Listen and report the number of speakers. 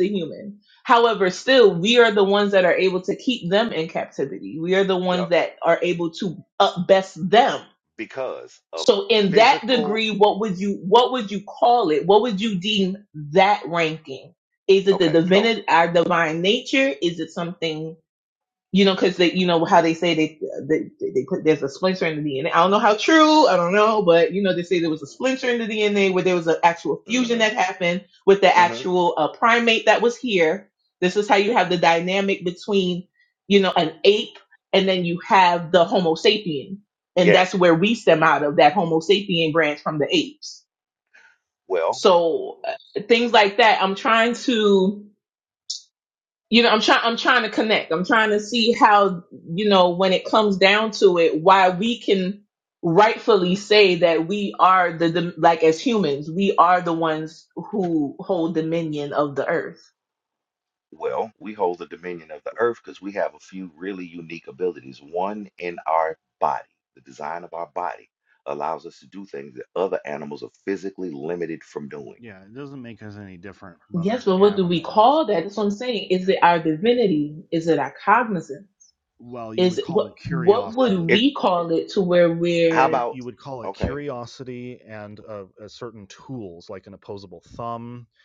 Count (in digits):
3